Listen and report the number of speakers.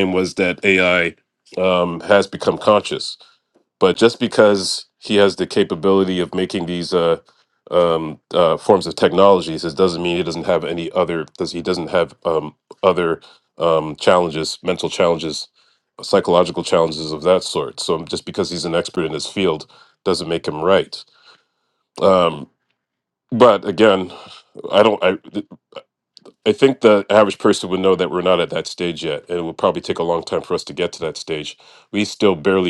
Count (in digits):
1